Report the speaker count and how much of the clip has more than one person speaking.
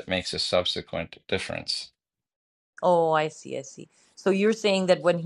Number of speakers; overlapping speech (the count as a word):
two, no overlap